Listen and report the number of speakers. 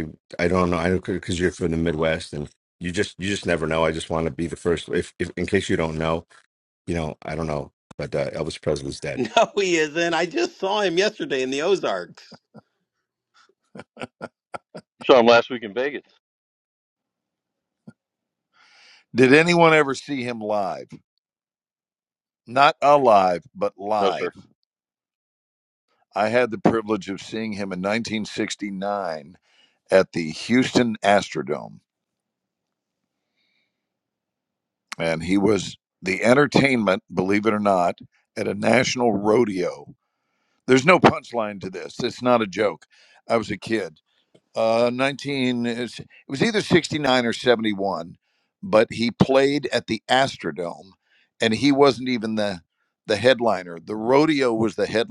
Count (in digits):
4